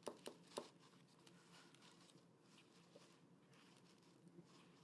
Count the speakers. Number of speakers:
0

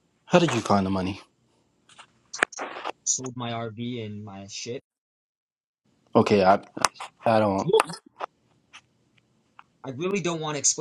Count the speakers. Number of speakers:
2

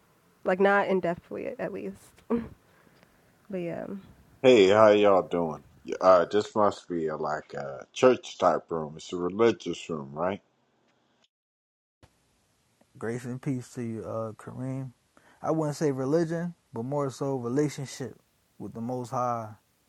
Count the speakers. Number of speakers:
3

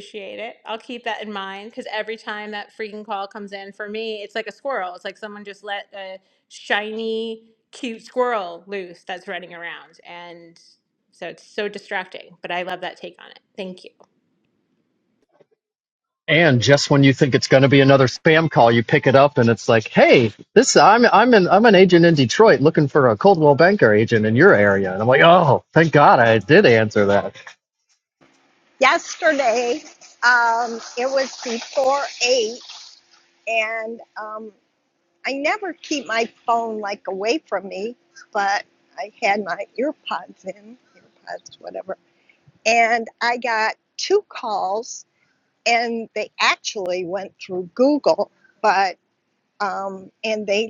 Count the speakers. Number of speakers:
3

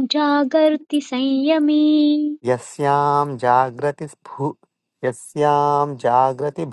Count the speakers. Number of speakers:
2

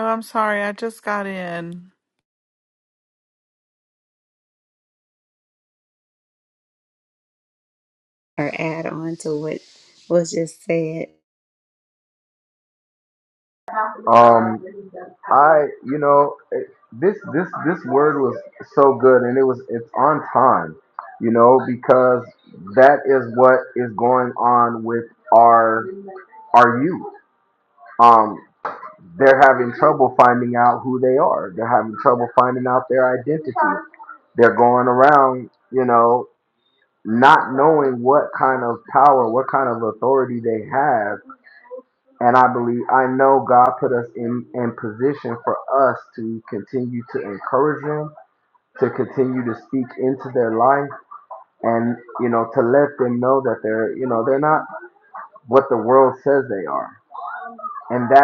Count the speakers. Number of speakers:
3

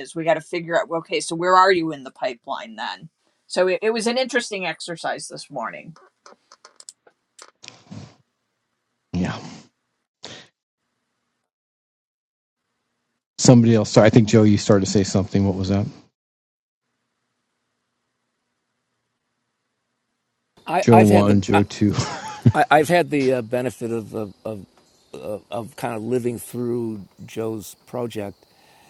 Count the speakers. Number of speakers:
3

